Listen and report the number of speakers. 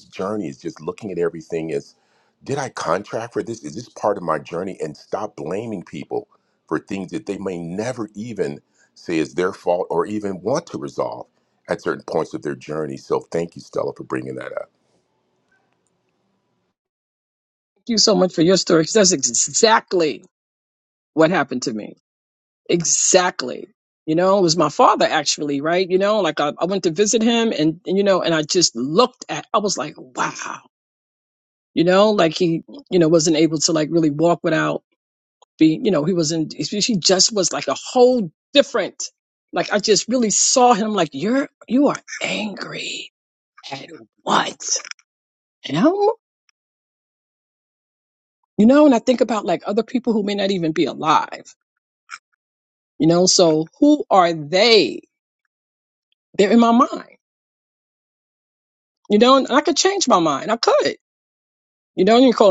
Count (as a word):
two